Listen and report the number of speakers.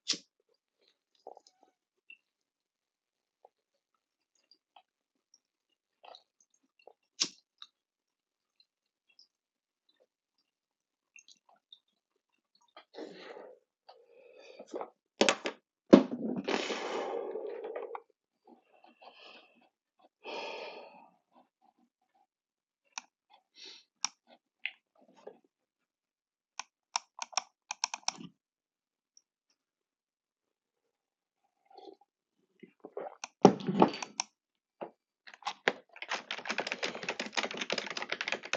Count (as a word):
zero